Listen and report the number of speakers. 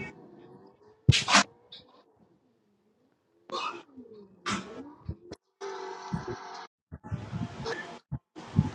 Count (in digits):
0